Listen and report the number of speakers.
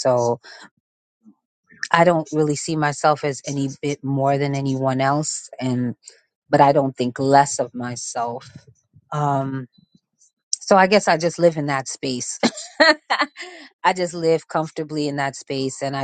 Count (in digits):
1